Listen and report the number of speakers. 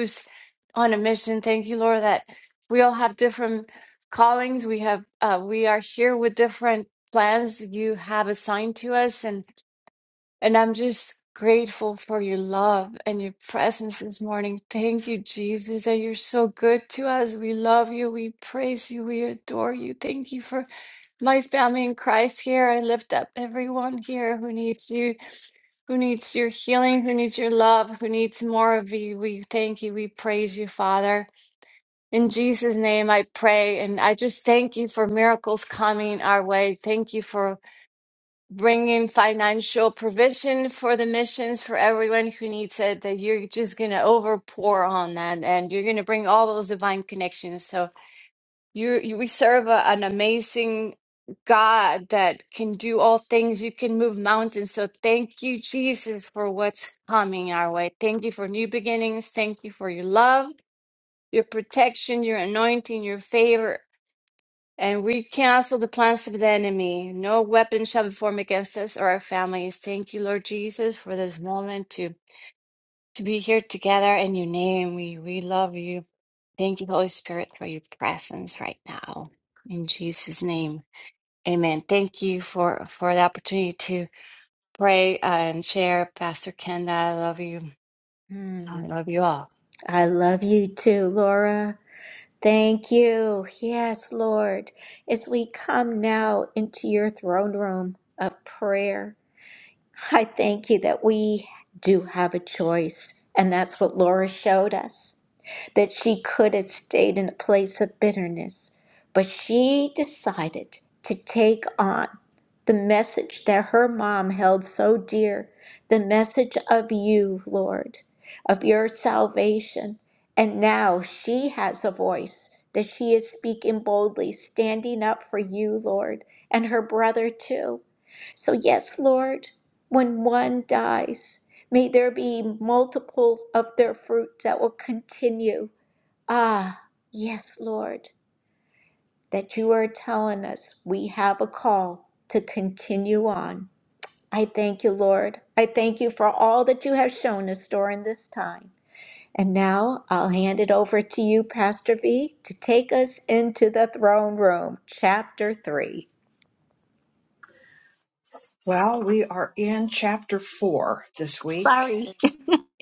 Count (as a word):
three